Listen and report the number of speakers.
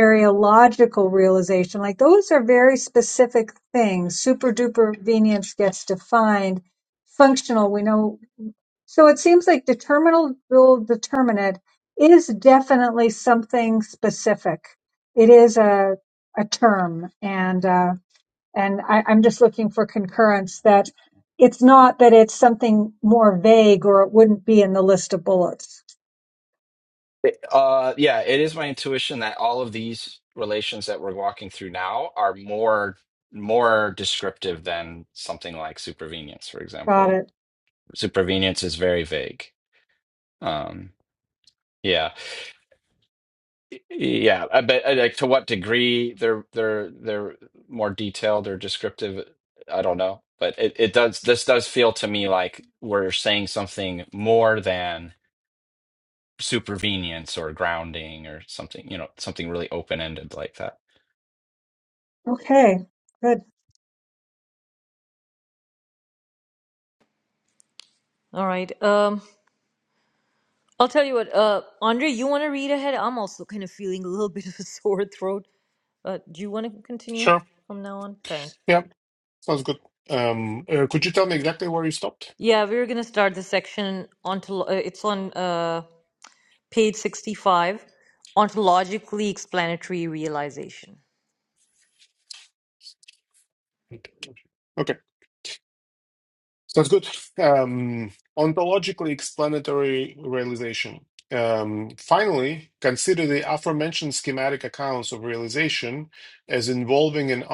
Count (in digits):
4